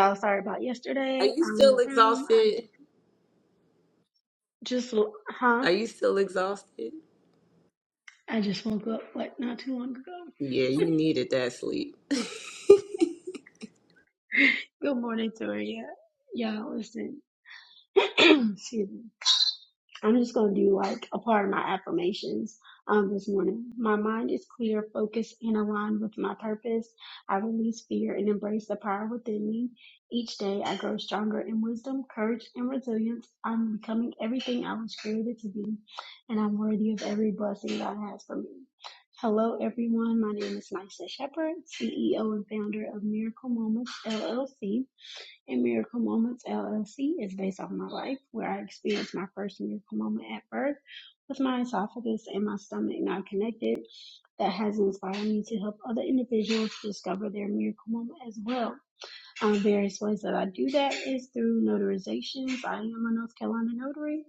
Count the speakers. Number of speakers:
two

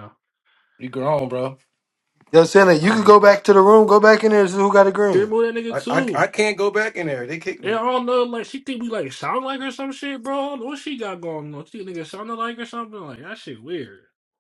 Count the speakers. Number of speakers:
three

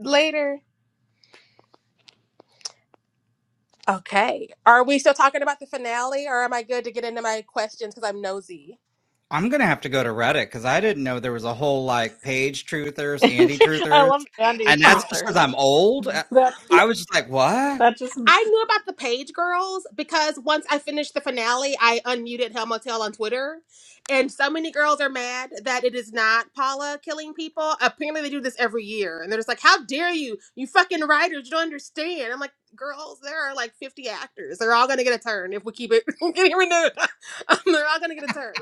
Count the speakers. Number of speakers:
three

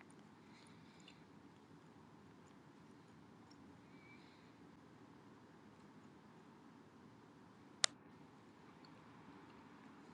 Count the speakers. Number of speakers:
zero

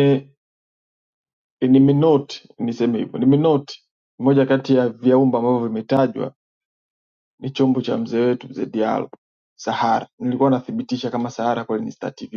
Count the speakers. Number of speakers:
one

